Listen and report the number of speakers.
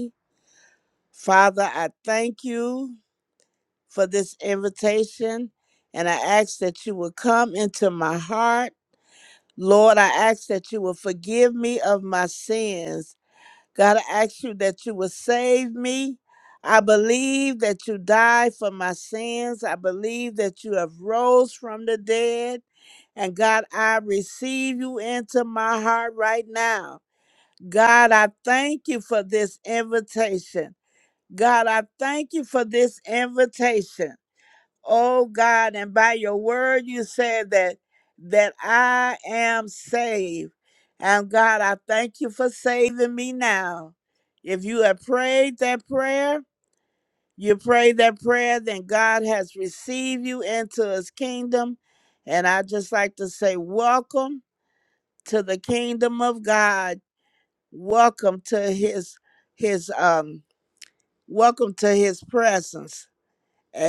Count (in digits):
1